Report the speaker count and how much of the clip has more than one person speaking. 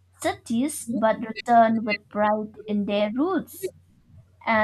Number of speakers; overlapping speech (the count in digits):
1, no overlap